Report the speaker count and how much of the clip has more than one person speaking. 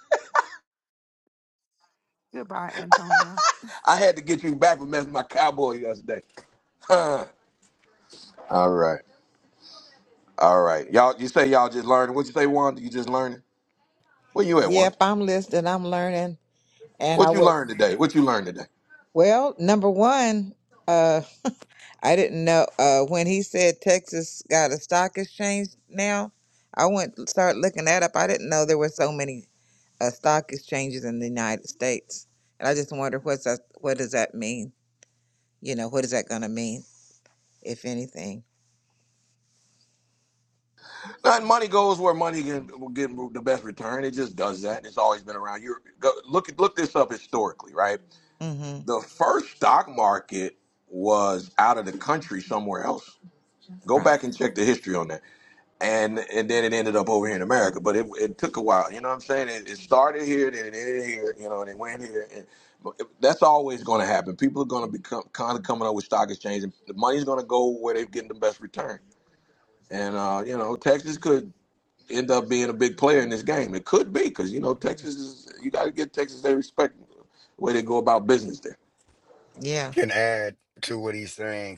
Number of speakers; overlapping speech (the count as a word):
four, about 1%